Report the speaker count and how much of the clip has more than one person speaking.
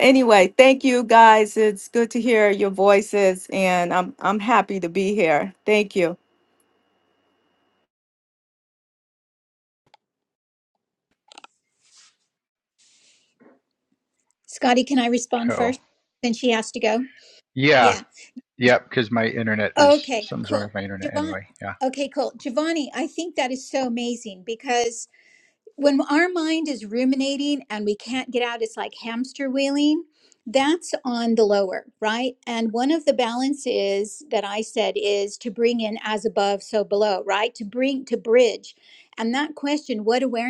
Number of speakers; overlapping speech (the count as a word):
three, about 4%